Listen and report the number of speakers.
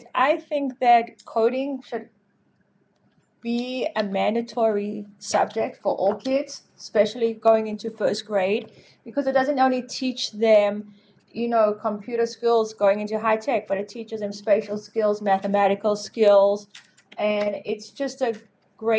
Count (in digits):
1